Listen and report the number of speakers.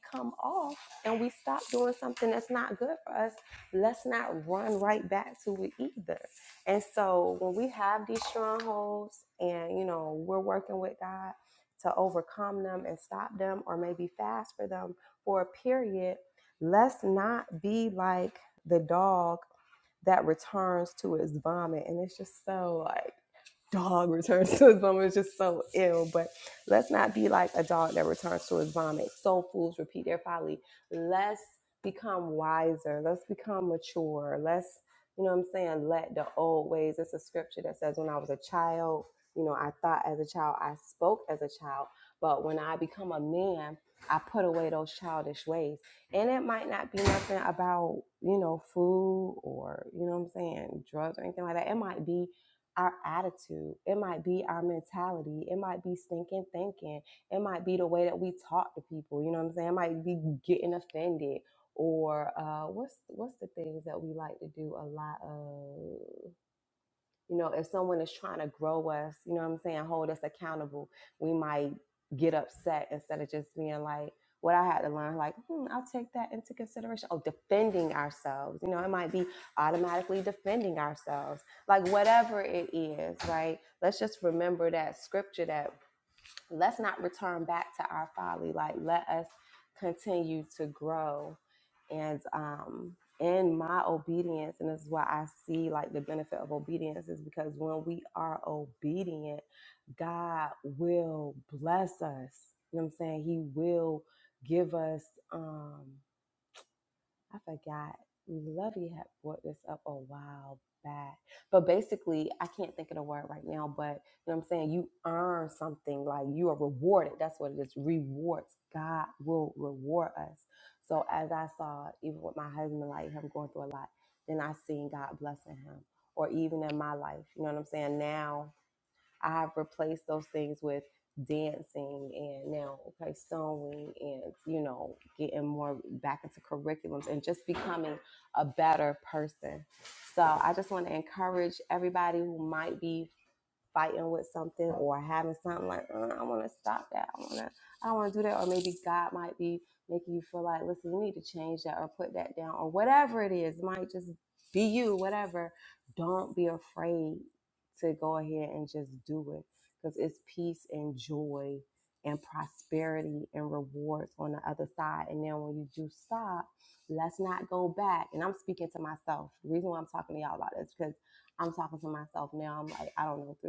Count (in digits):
1